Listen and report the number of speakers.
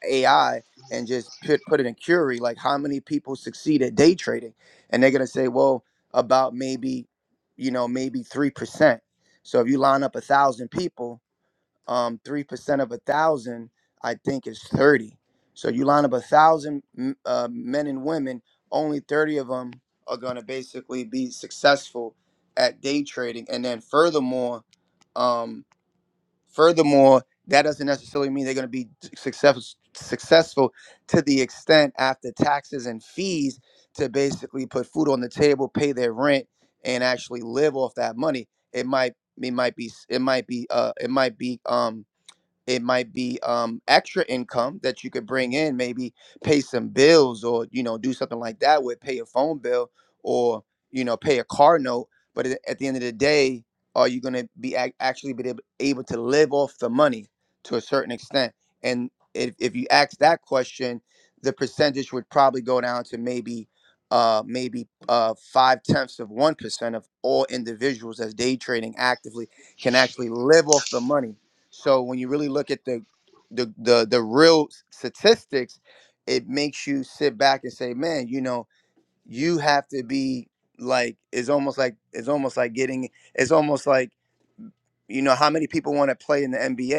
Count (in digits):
1